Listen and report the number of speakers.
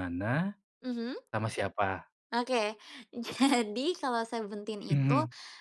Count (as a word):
two